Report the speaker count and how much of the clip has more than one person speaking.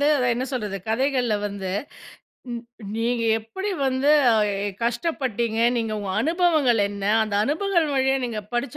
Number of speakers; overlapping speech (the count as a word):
one, no overlap